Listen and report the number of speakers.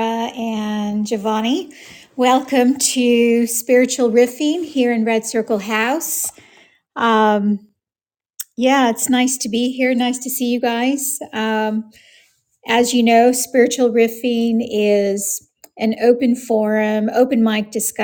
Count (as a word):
one